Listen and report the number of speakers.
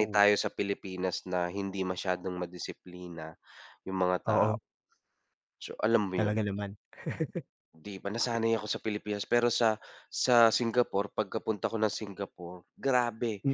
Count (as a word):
two